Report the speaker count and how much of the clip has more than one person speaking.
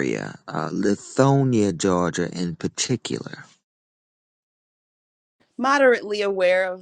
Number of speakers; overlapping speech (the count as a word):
two, no overlap